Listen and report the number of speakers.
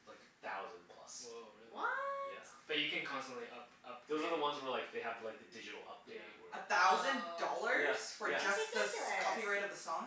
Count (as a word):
four